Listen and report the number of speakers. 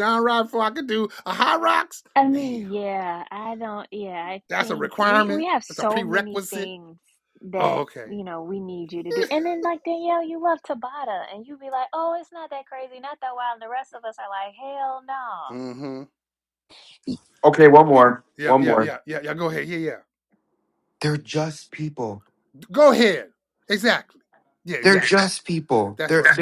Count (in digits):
3